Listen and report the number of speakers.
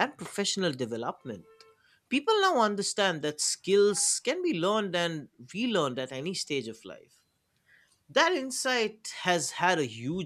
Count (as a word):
one